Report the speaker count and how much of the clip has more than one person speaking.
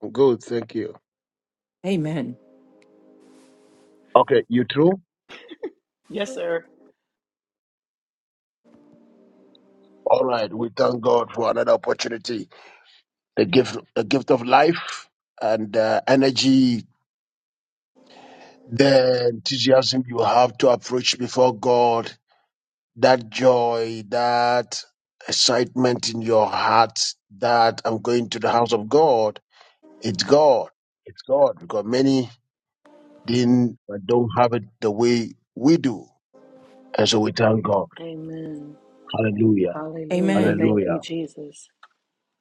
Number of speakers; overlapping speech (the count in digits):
3, about 2%